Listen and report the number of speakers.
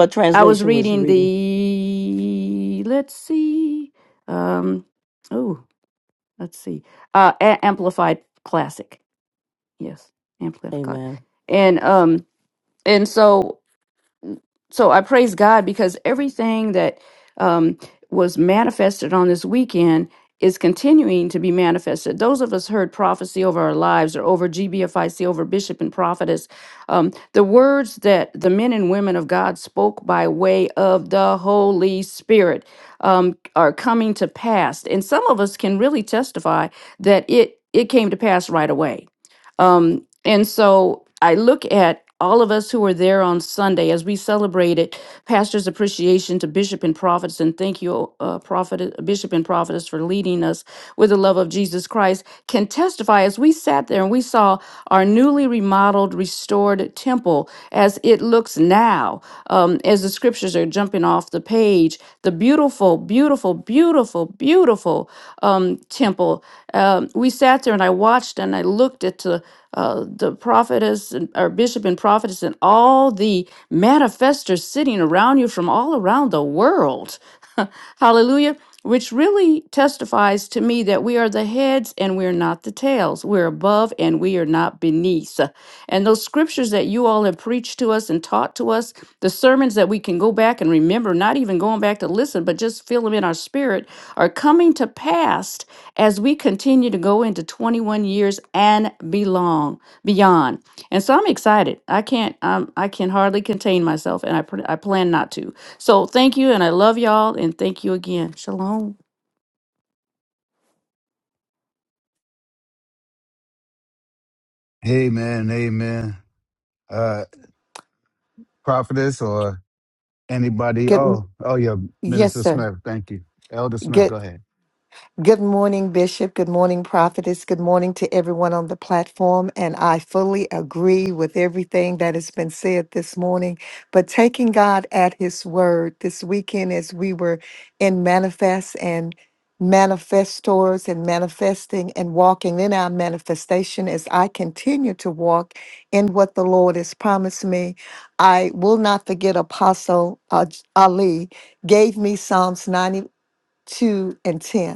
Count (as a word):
four